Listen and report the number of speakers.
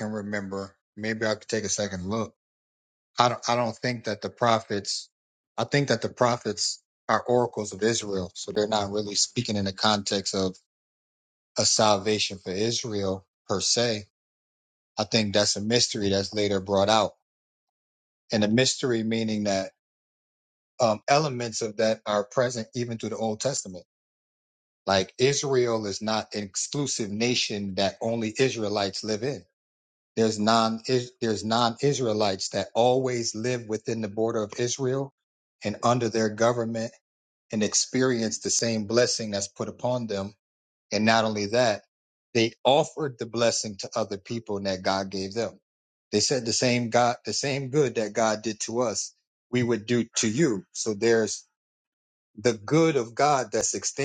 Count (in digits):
1